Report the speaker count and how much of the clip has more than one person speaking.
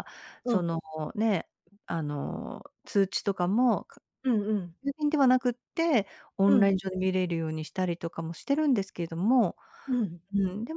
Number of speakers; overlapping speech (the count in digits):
2, about 4%